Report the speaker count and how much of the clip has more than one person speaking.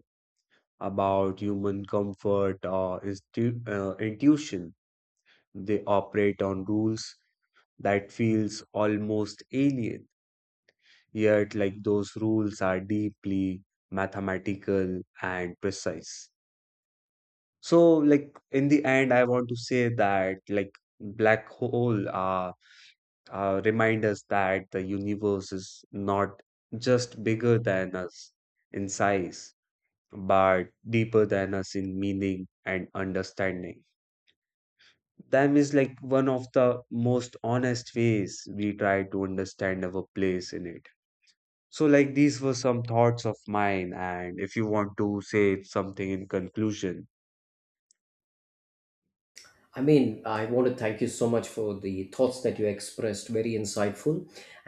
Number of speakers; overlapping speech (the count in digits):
2, no overlap